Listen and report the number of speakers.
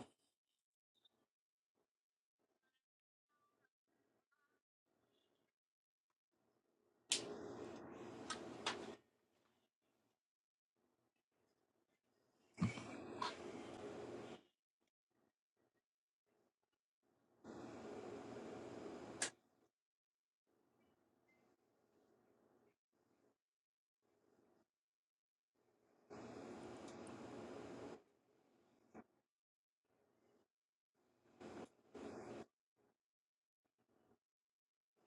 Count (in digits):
0